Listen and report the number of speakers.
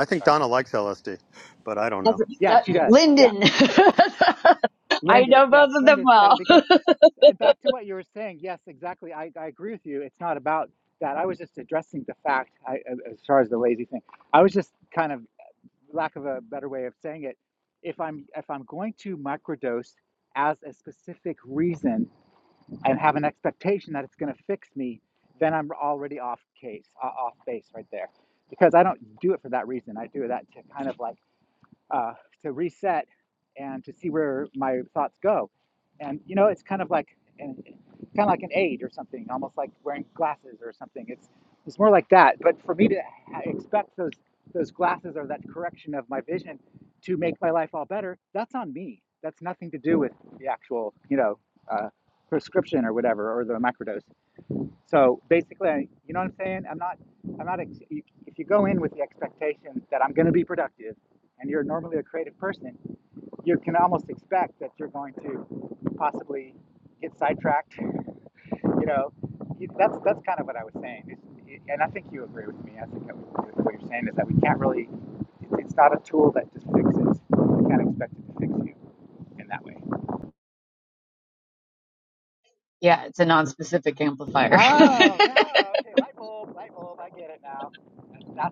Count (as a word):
three